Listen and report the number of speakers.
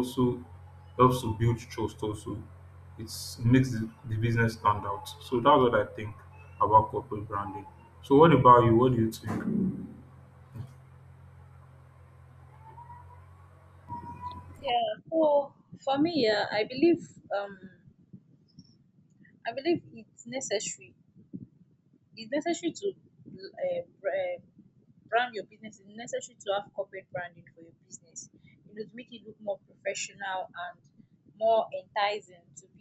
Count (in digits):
2